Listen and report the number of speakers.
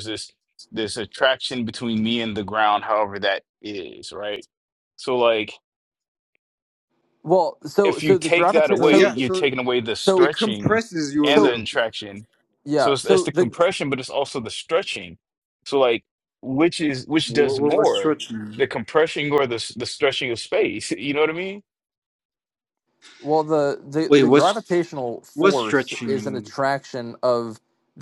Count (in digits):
3